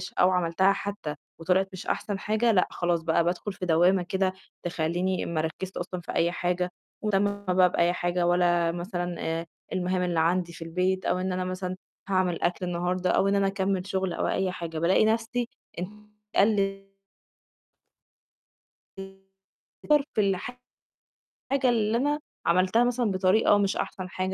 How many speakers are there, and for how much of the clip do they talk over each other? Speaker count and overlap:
1, no overlap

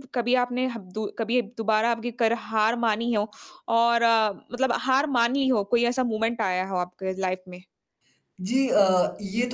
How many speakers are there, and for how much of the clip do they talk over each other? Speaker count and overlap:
2, no overlap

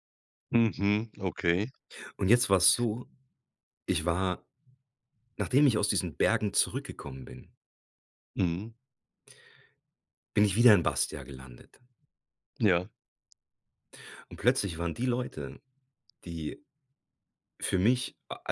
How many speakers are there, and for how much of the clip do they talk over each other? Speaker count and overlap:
2, no overlap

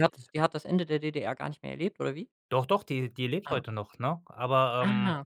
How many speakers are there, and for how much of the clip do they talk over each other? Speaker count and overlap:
2, about 9%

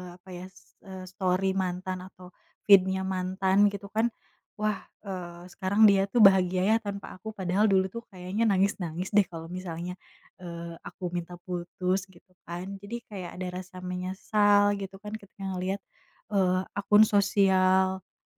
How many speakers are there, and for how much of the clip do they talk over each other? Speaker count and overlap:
1, no overlap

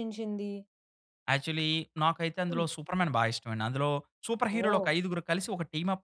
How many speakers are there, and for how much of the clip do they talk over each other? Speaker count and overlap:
2, about 9%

